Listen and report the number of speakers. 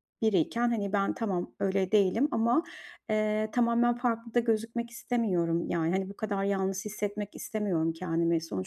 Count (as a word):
one